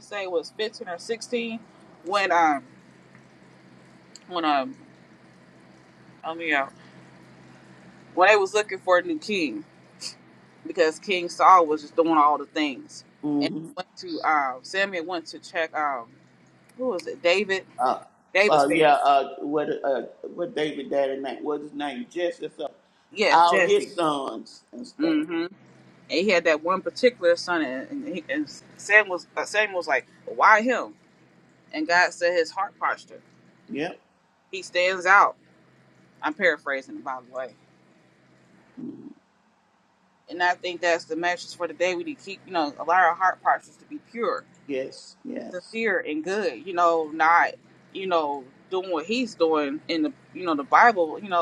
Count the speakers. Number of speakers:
2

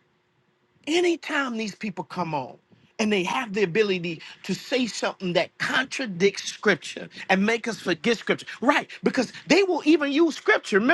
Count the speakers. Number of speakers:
1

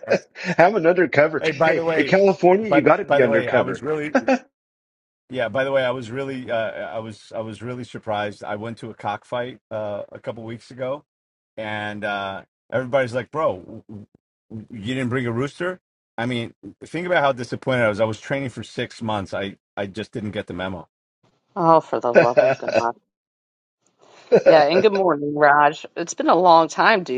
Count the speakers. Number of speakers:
3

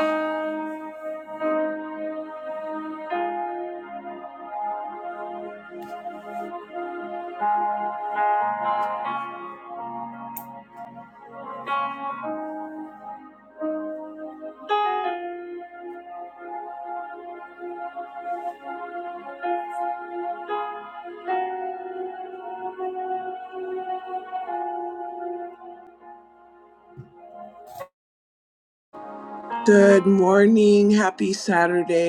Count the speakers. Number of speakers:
1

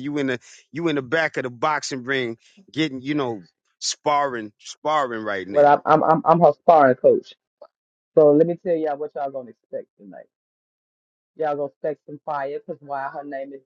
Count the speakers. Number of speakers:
2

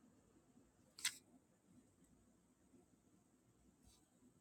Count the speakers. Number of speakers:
0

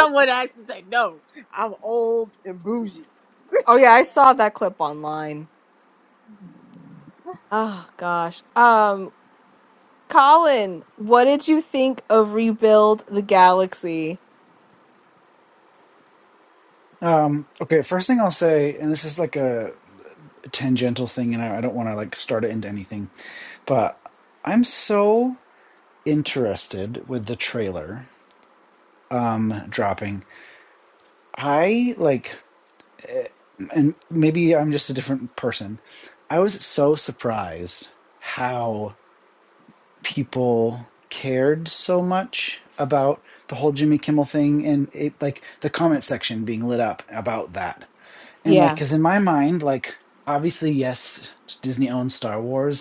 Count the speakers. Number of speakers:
3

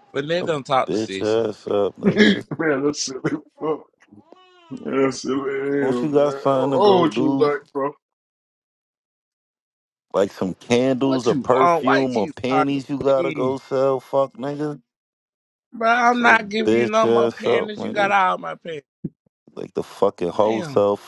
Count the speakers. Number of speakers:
3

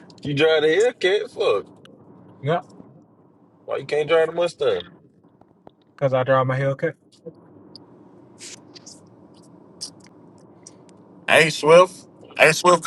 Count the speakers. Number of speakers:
3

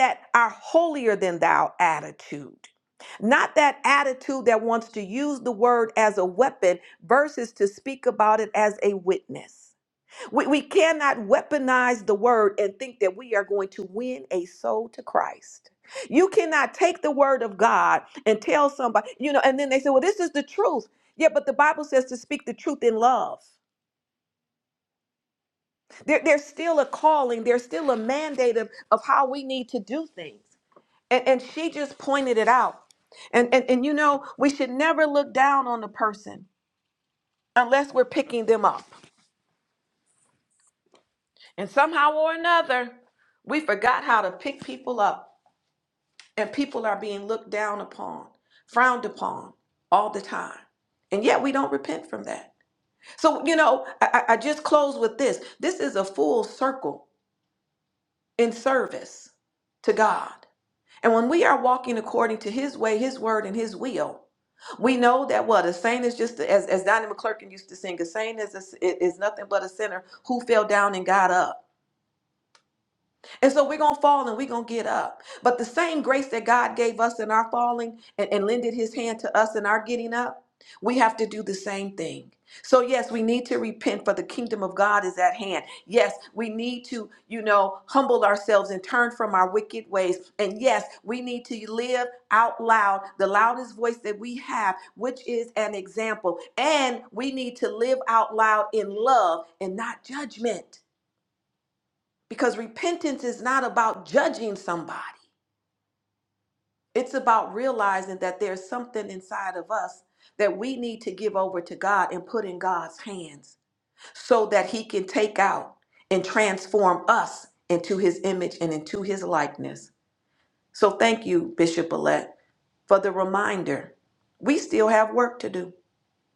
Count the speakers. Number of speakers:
1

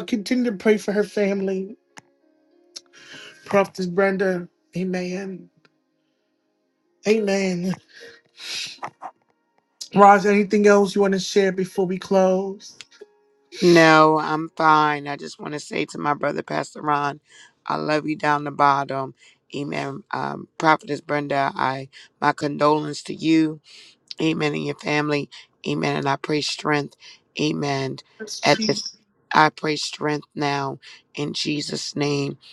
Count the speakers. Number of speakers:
2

